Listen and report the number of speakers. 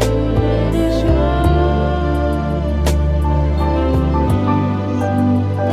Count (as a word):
zero